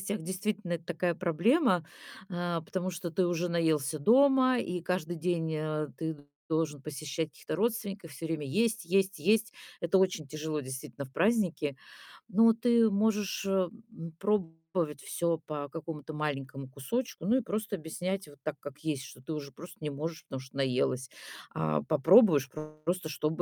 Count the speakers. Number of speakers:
1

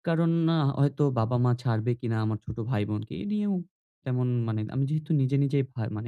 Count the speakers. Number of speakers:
1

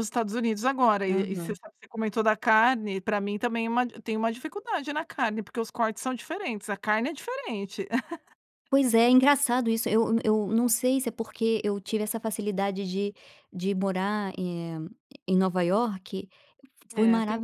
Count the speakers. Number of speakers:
2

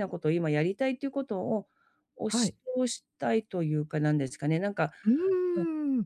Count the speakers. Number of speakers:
2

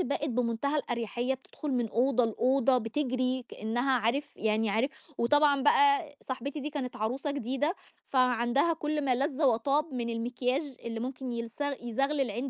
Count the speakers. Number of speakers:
1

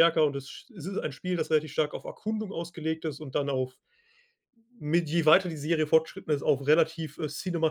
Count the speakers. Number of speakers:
1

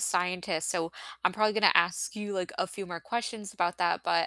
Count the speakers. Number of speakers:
1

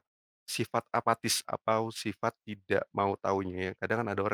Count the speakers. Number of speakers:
1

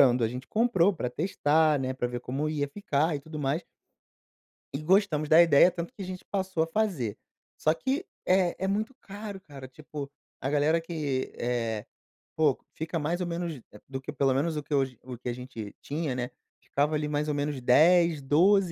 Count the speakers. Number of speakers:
1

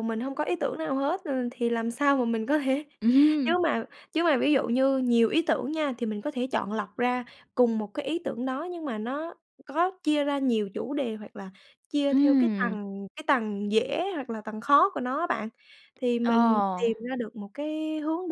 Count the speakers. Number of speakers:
2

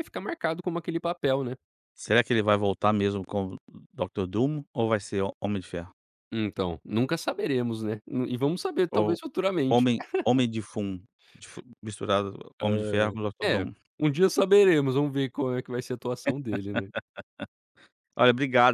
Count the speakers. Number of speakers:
2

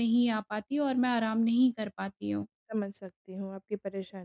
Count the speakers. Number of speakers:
2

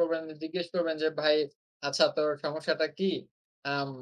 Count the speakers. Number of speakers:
1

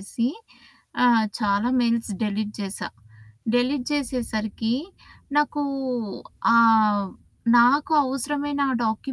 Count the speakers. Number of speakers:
1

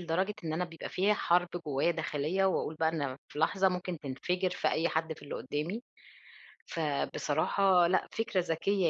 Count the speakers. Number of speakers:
1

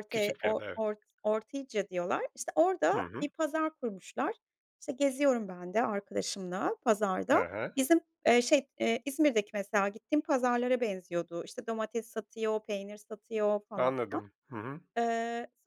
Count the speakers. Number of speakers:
2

